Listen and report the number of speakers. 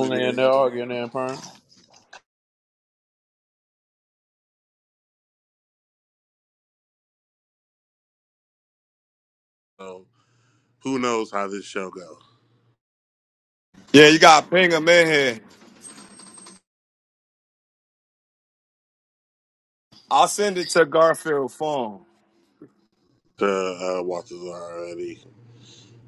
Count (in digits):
3